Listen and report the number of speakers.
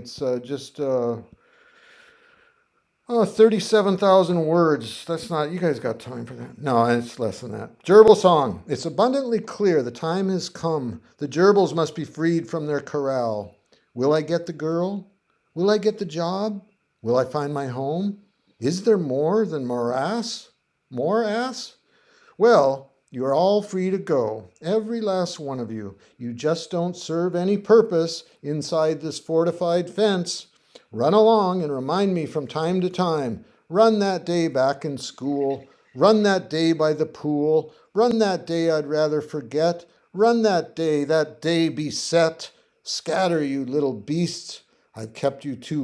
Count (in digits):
1